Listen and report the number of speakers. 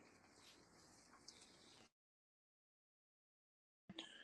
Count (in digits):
0